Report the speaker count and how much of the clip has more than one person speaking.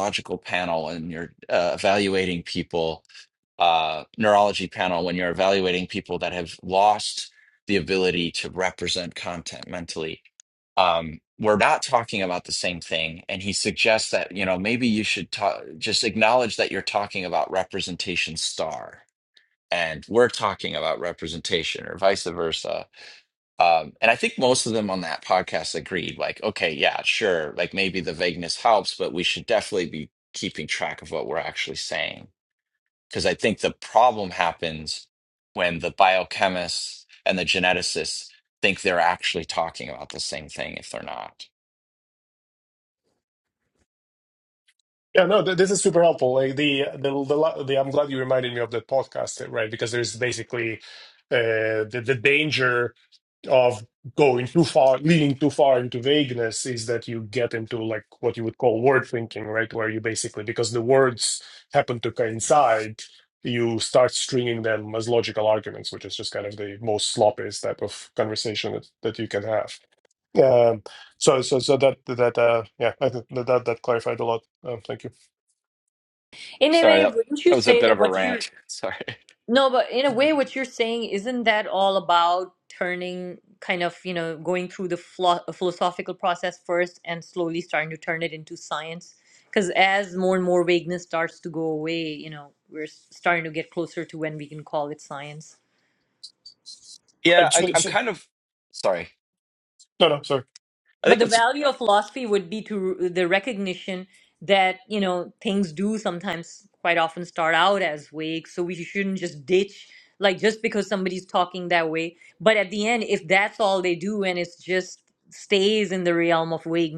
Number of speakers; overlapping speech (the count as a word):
three, about 2%